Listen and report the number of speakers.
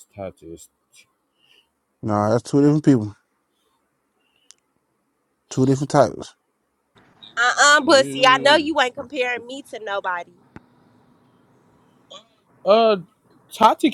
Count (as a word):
three